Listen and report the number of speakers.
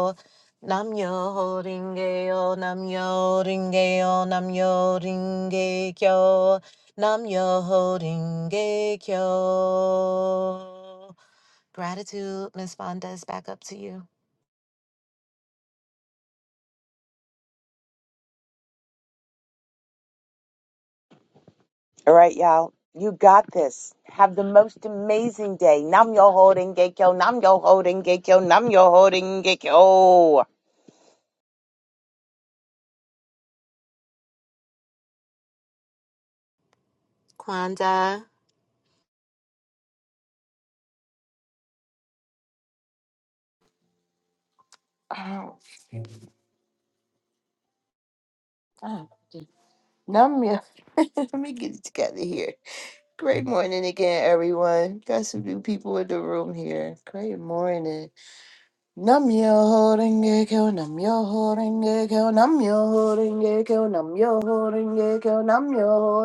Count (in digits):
3